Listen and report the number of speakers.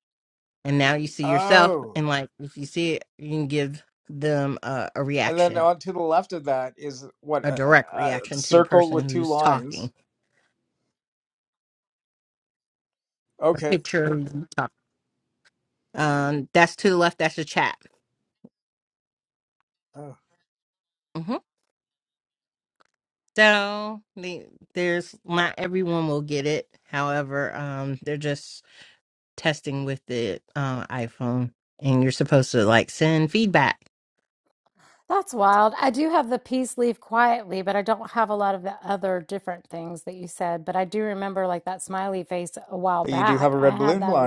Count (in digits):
3